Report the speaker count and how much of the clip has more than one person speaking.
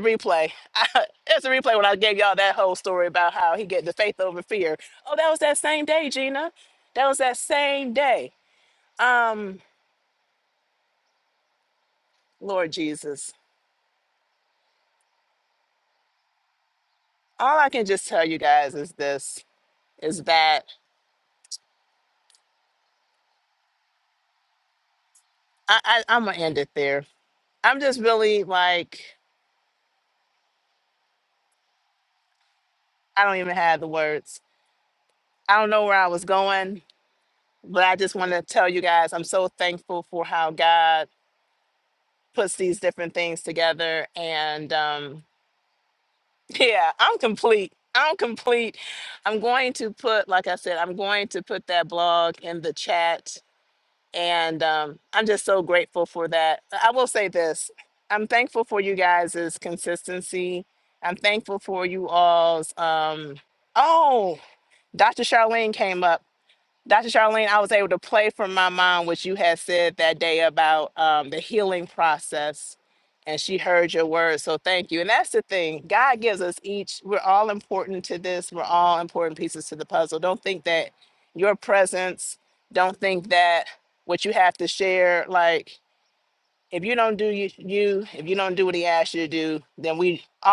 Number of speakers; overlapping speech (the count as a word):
one, no overlap